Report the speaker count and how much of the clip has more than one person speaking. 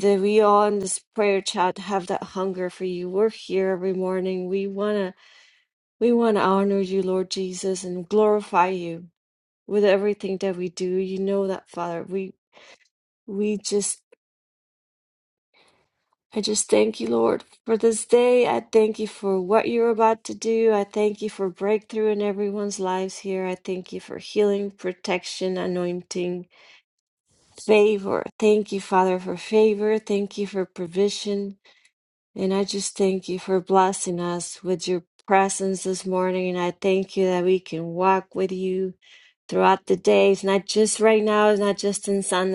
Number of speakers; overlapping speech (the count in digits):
1, no overlap